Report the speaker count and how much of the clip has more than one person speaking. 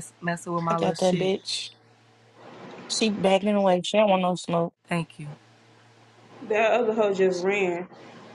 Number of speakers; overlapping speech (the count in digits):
3, about 7%